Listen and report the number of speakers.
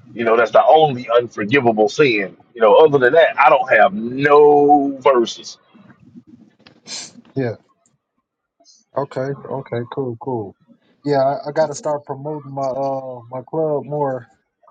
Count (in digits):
2